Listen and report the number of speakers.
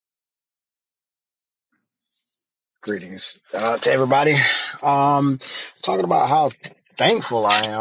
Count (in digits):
1